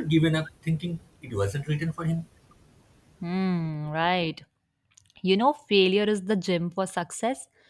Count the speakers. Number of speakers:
two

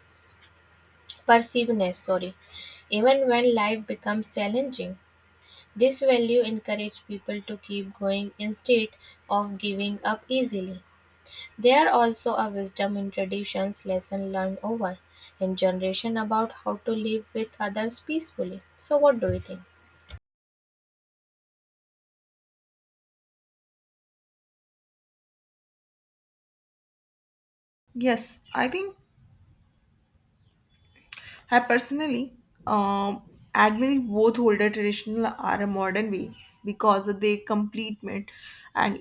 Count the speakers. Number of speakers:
two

